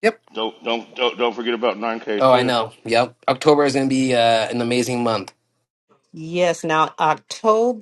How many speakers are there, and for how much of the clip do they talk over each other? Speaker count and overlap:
3, about 6%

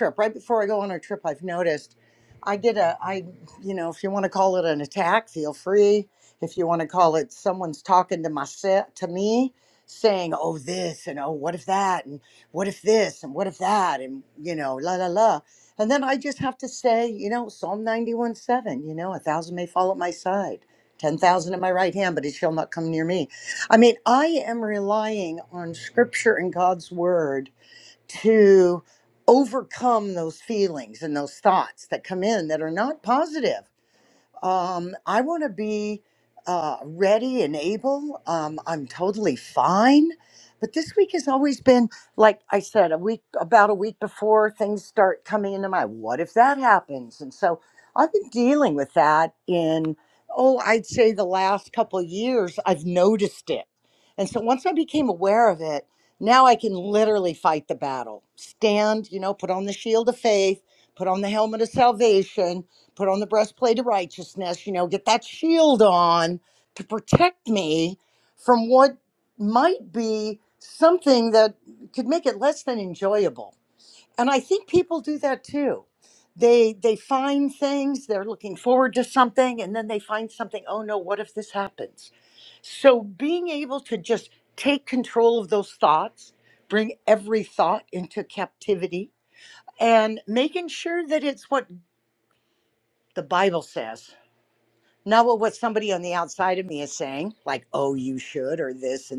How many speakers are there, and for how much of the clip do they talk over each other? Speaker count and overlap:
1, no overlap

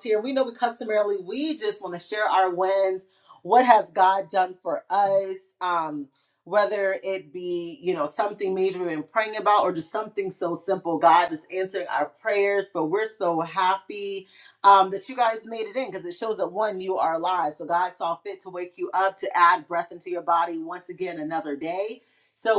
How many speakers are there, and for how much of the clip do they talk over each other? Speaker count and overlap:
1, no overlap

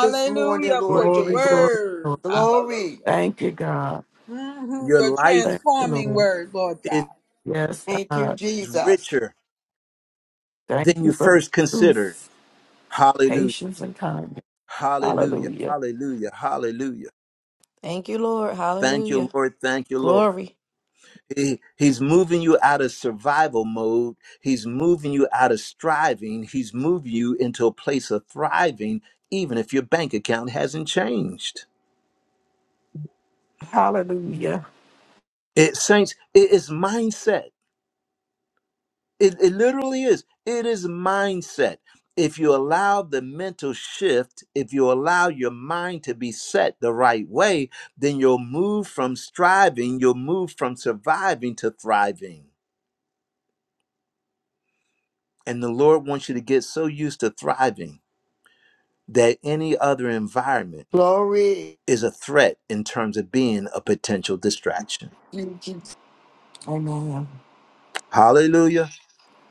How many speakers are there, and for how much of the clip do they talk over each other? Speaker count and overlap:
5, about 12%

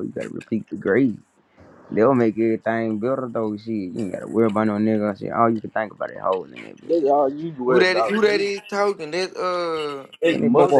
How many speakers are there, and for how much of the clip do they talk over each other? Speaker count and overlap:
3, about 13%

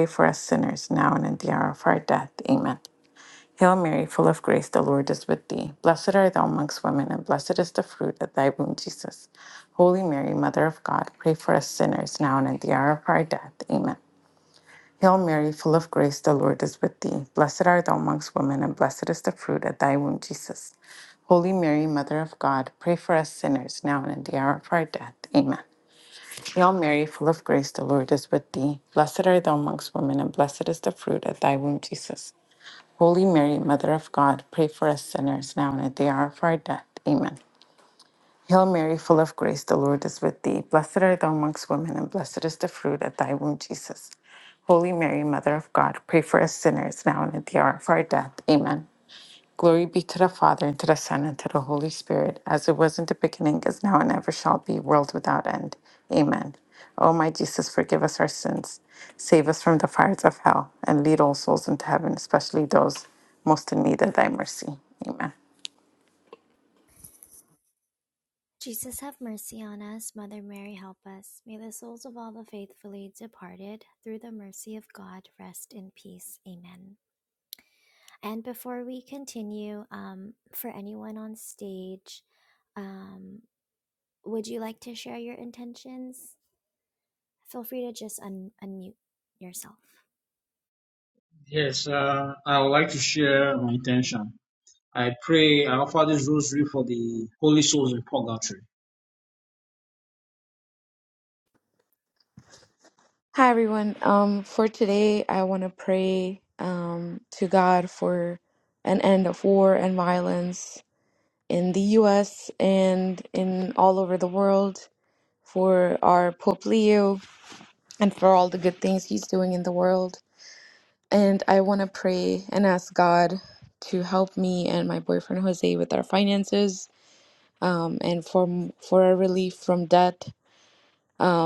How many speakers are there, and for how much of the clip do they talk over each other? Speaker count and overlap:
4, no overlap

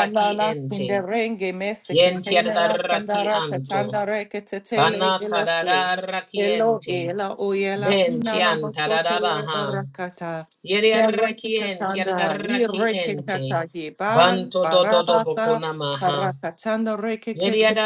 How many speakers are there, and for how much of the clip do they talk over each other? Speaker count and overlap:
2, about 64%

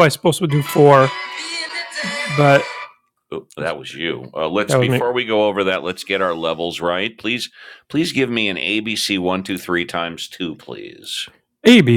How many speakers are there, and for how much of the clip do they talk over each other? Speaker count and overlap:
2, about 3%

